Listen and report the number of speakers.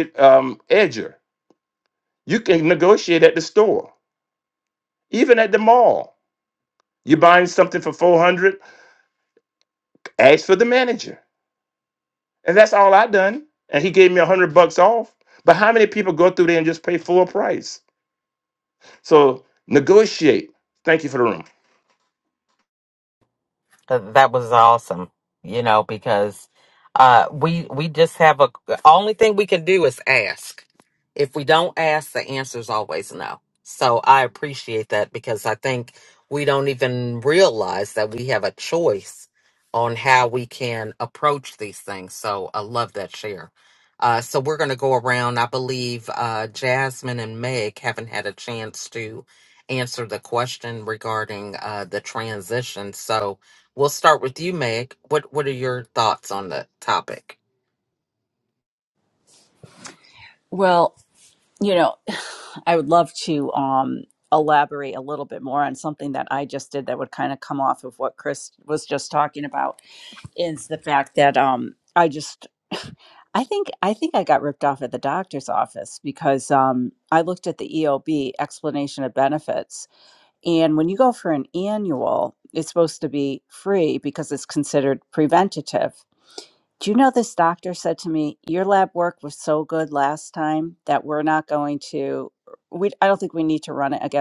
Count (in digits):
3